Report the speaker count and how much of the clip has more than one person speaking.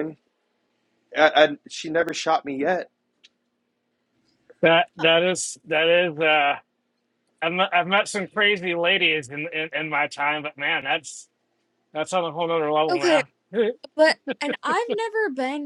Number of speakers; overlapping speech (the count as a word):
three, about 3%